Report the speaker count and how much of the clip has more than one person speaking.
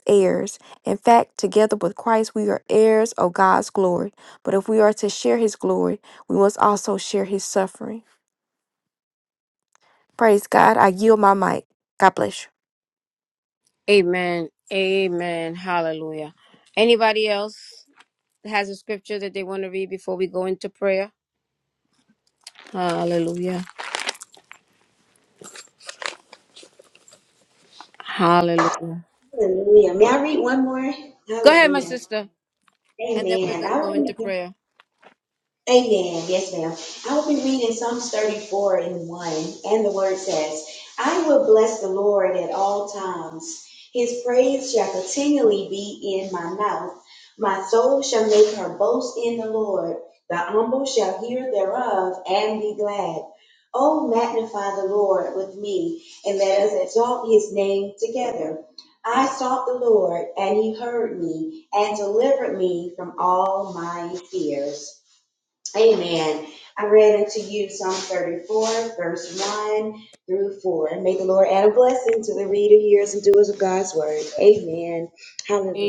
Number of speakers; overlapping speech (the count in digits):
3, about 2%